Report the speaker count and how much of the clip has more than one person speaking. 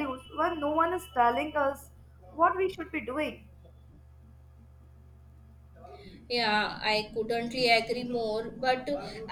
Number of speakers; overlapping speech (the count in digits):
2, no overlap